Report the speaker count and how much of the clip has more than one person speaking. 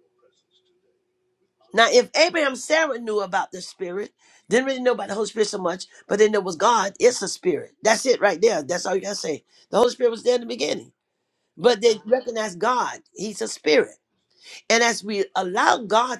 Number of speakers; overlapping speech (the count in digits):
1, no overlap